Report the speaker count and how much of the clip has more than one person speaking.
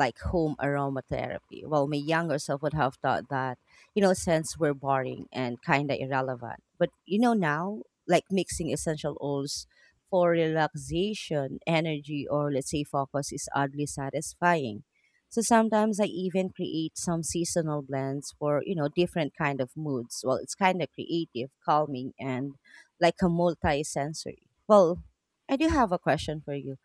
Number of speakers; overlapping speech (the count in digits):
1, no overlap